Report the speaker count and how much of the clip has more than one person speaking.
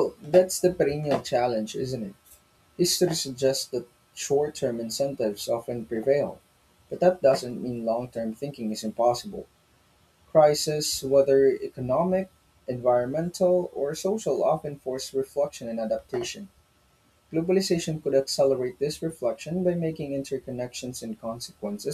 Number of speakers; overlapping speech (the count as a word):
one, no overlap